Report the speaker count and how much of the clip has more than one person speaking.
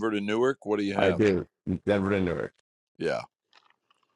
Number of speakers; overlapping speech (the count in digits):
2, about 6%